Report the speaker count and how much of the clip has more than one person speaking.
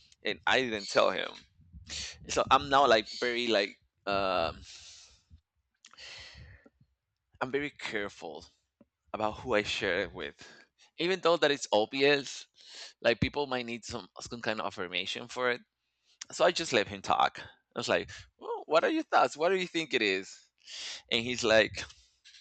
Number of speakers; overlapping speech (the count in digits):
1, no overlap